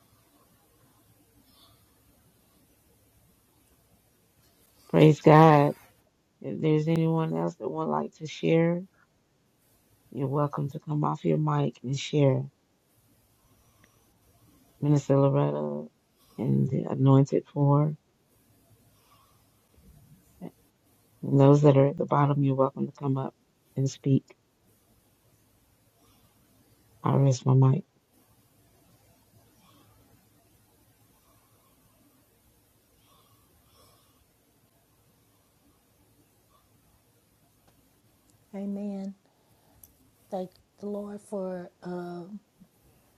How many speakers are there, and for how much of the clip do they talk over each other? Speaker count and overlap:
2, no overlap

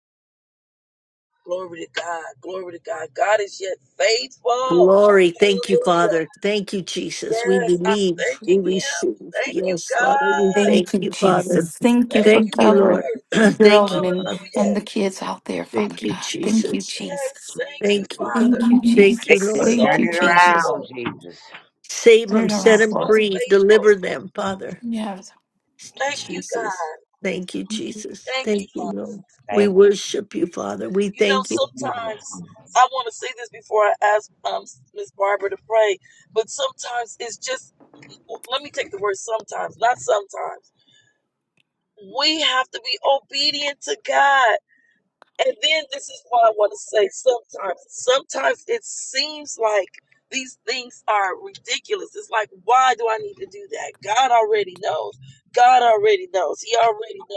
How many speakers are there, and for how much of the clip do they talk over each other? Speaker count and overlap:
4, about 29%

